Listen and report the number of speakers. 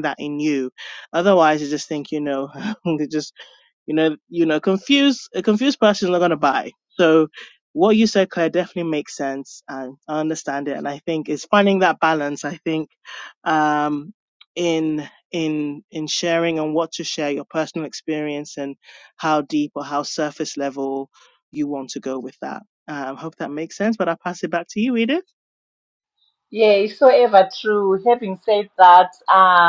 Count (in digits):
2